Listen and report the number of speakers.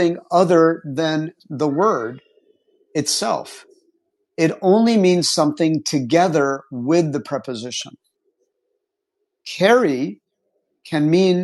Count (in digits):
1